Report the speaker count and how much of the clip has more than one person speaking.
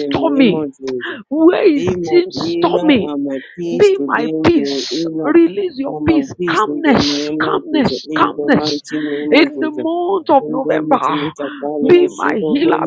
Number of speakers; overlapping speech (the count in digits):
2, about 65%